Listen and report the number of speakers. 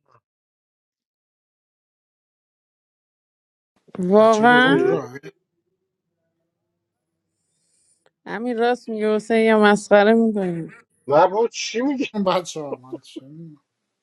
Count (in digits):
3